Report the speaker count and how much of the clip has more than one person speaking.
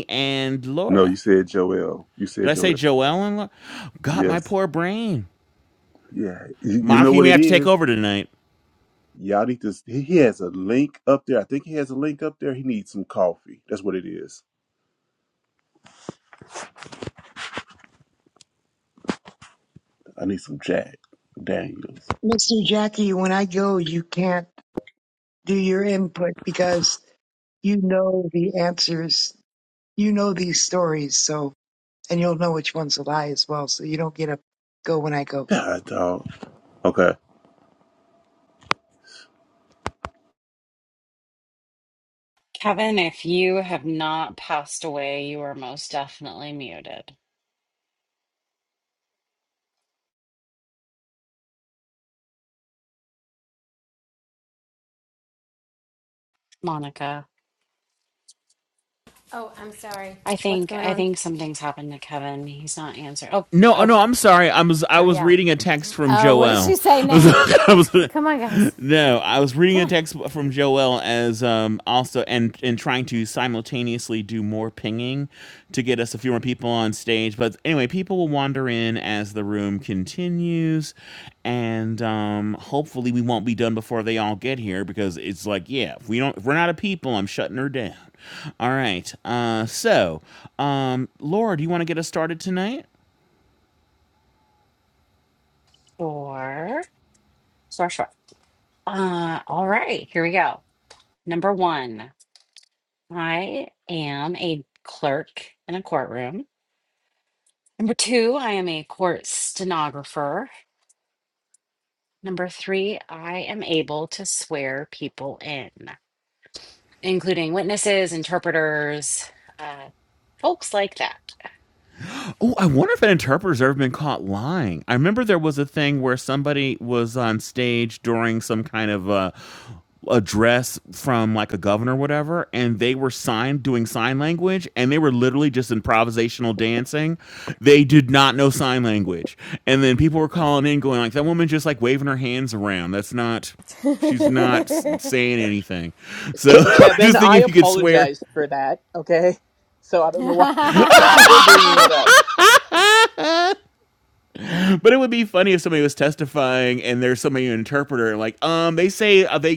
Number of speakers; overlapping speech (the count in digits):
6, about 4%